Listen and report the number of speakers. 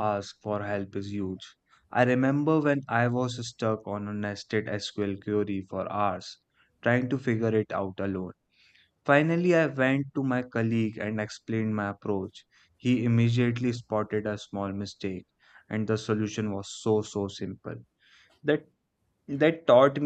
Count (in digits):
1